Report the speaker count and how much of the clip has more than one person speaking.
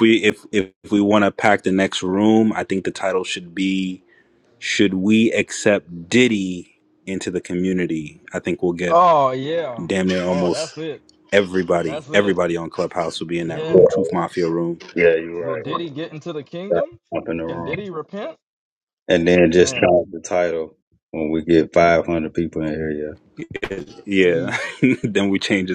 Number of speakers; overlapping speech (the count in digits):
3, about 12%